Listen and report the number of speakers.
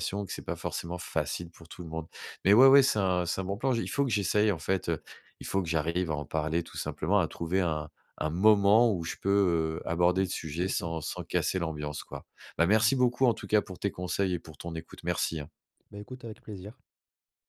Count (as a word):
two